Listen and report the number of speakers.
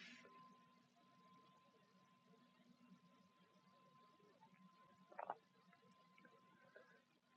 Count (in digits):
0